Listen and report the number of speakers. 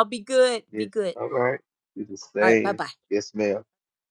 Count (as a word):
two